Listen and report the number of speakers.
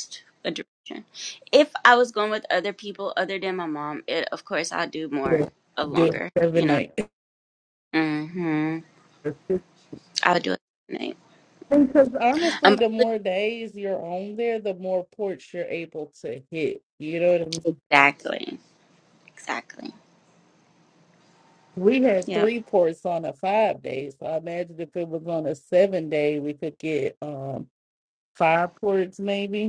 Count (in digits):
2